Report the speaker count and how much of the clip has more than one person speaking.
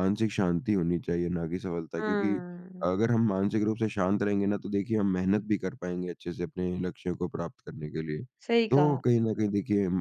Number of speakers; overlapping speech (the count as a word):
two, about 7%